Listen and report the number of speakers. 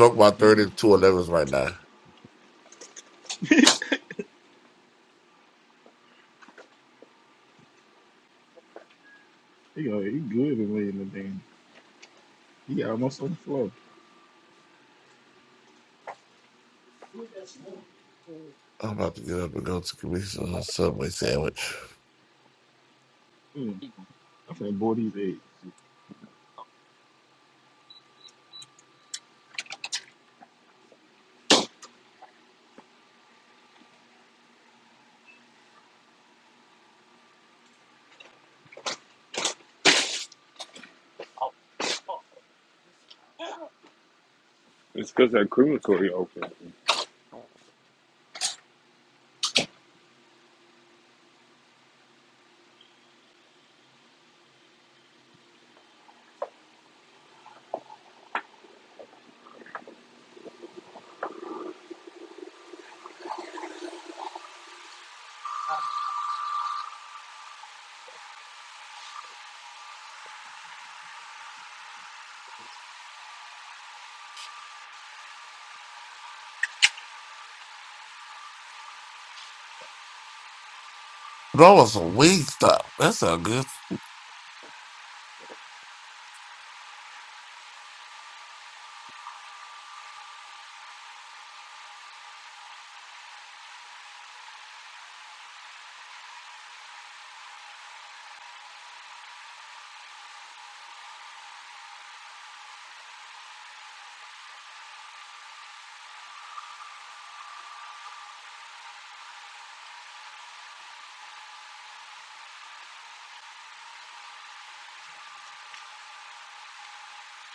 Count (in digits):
3